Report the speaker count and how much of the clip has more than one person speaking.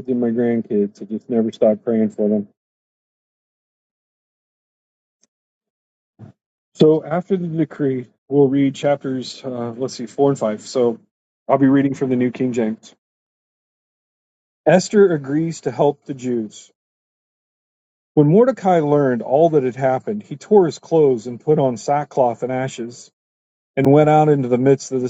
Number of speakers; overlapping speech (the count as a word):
one, no overlap